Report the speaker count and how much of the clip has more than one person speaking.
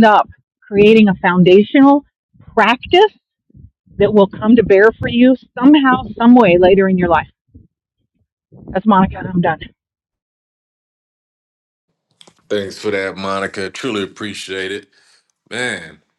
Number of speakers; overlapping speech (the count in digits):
2, no overlap